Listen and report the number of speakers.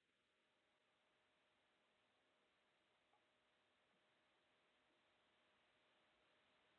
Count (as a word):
zero